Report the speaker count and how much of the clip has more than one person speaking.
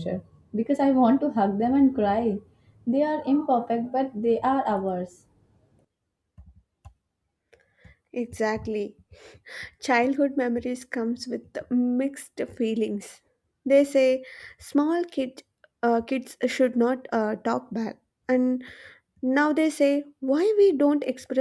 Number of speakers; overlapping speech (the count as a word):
two, no overlap